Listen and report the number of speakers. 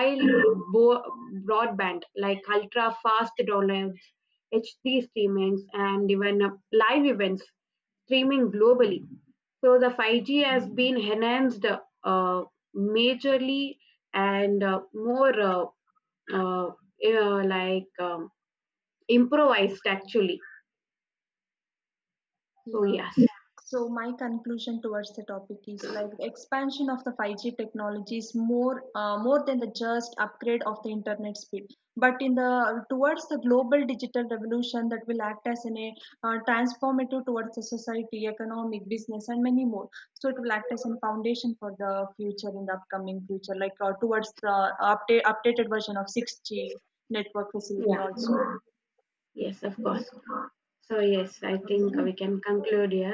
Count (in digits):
2